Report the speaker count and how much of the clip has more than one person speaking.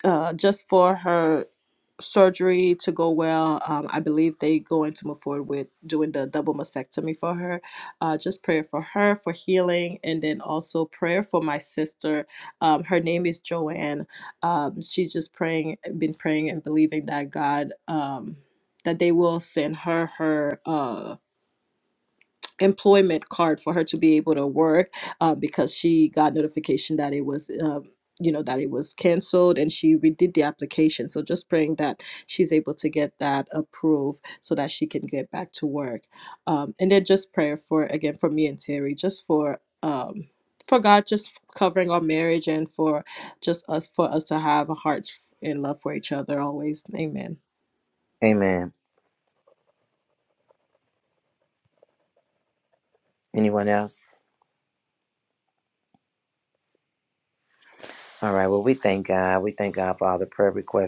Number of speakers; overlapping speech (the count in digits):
2, no overlap